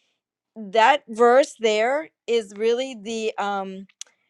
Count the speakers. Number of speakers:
one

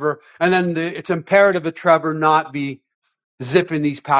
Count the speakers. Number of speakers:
one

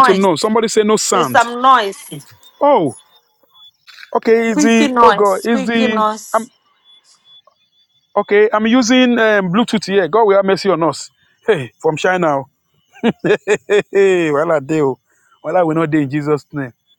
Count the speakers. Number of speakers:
two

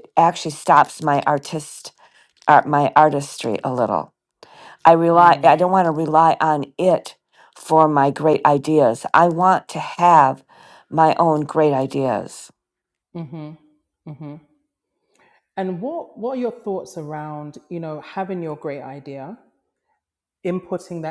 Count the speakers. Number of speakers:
two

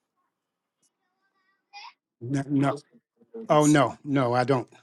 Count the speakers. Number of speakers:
one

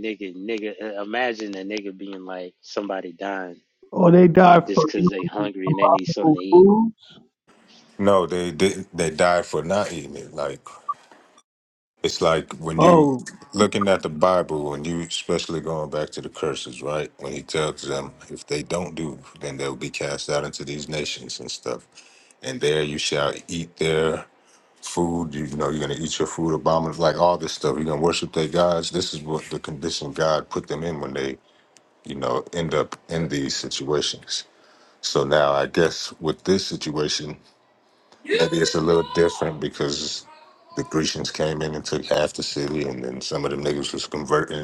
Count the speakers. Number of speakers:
three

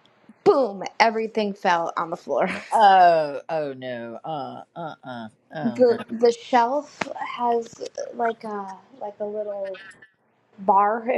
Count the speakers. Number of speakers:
two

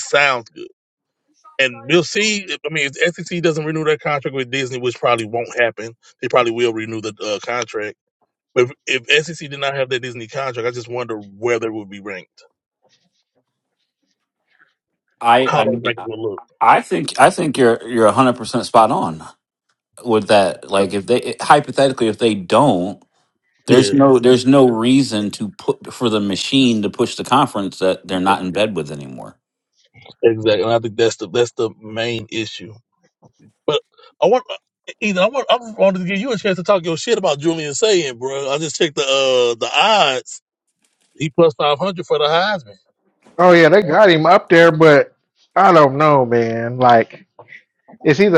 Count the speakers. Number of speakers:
three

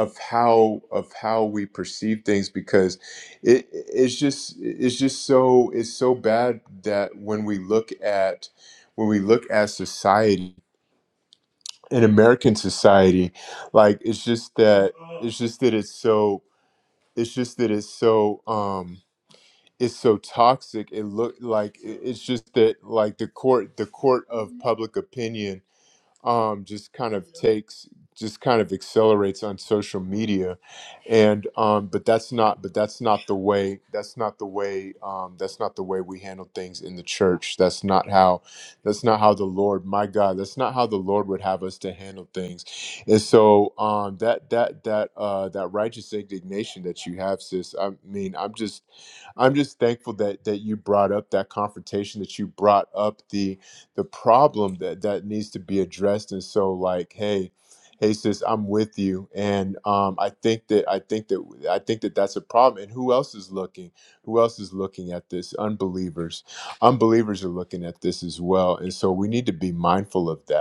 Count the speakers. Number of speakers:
one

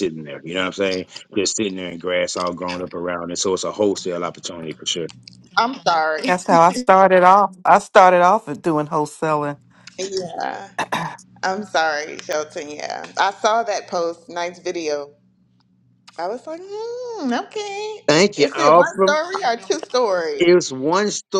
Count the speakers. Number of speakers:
three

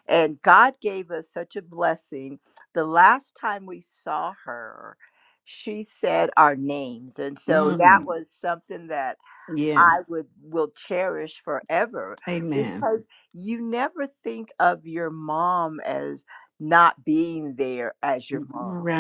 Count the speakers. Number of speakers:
two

